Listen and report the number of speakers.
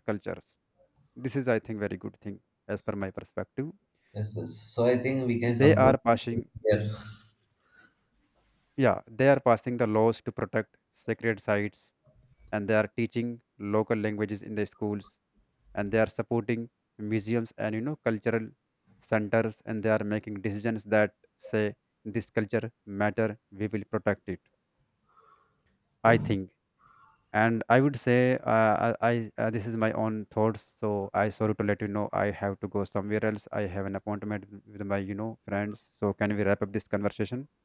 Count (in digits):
2